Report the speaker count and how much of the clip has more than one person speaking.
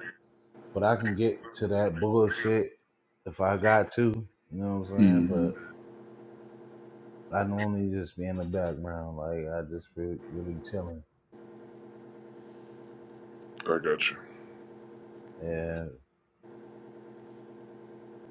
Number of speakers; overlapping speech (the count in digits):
2, about 3%